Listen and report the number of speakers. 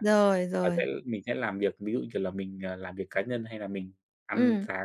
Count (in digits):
2